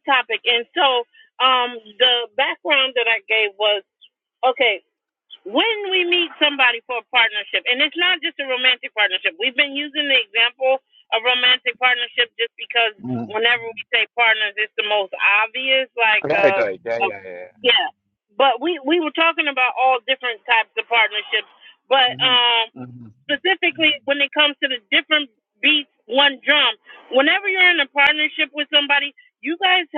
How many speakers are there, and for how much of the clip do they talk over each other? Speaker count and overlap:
two, about 3%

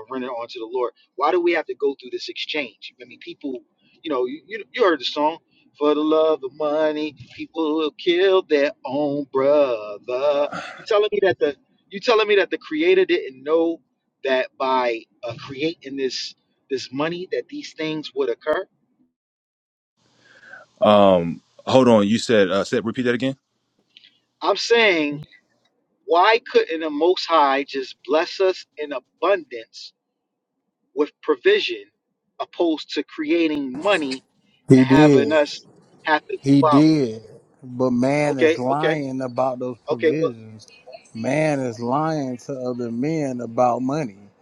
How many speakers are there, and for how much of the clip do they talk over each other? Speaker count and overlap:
three, about 5%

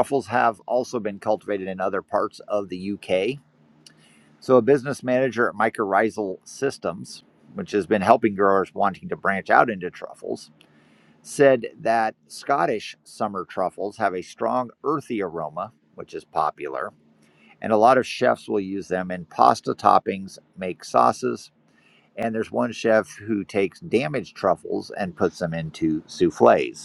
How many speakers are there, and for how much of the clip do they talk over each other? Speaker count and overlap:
one, no overlap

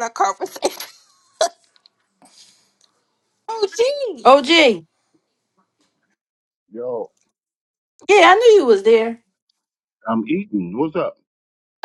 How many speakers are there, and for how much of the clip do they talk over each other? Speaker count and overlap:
three, no overlap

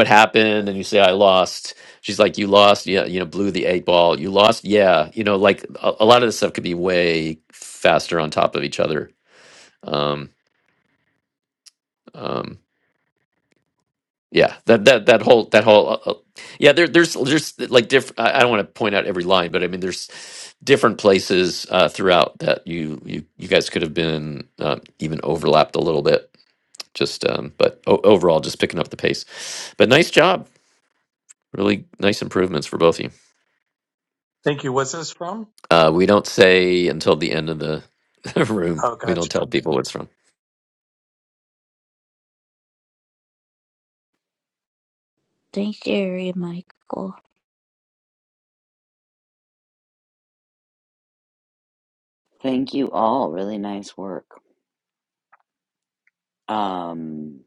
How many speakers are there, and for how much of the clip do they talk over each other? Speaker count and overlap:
four, about 1%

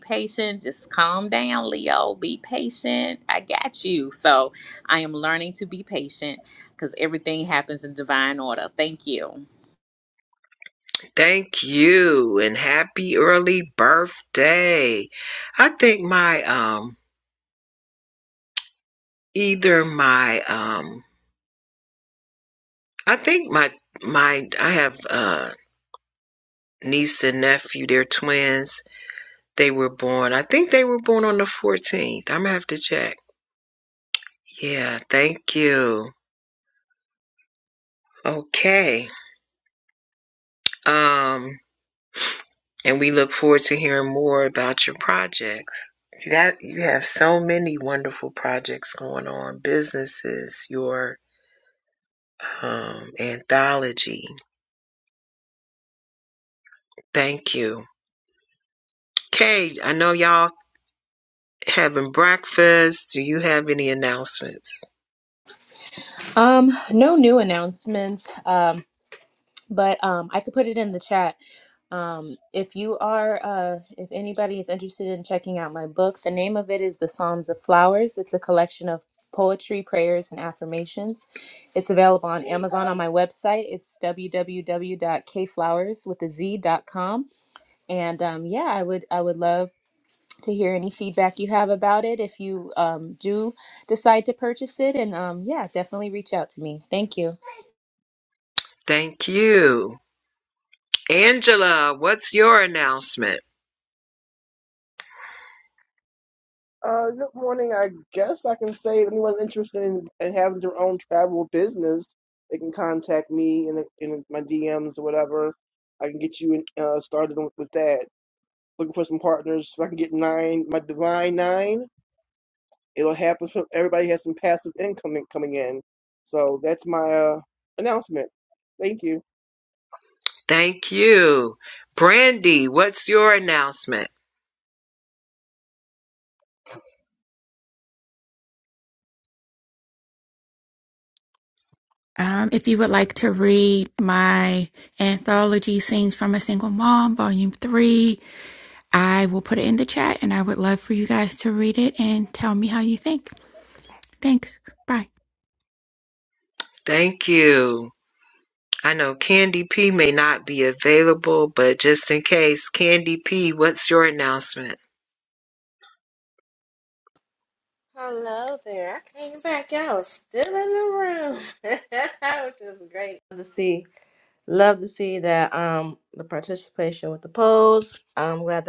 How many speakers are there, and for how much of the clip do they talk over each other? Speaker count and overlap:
six, no overlap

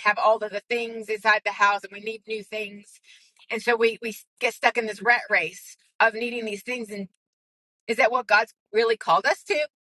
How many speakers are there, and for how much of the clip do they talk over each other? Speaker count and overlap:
one, no overlap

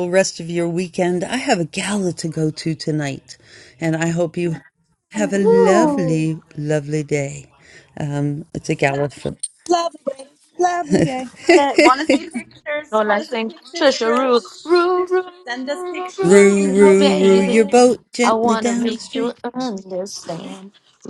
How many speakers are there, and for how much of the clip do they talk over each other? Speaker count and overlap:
four, about 28%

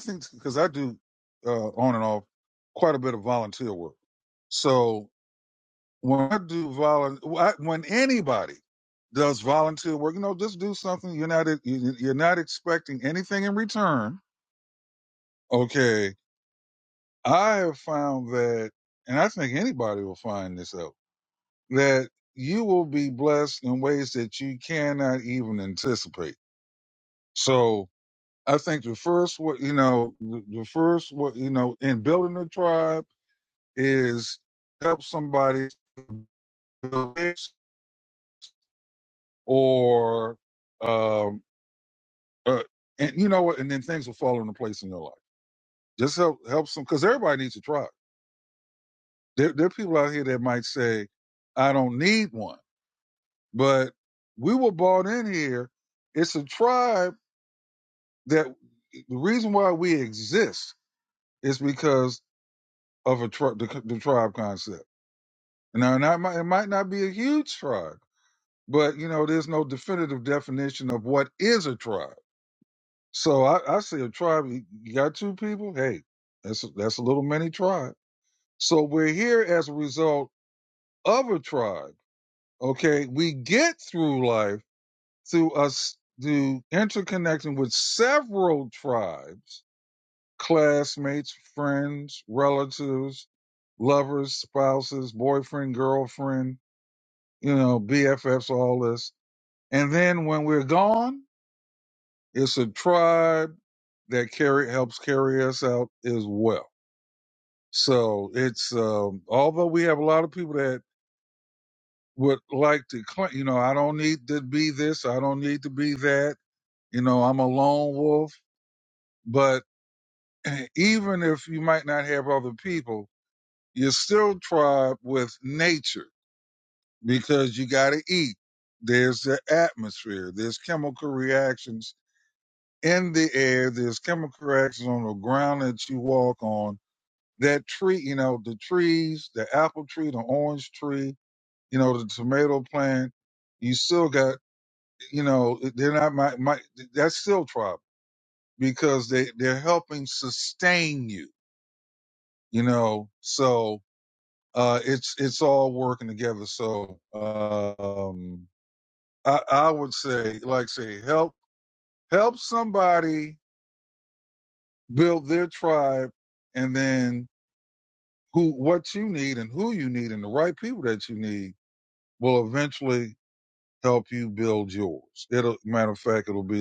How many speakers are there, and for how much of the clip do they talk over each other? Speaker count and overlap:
one, no overlap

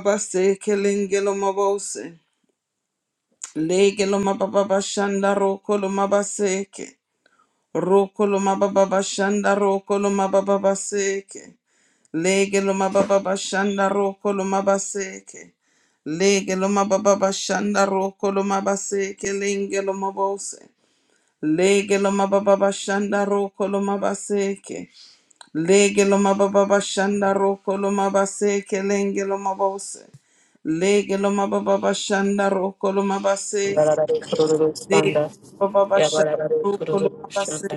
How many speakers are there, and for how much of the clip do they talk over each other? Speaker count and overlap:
two, about 5%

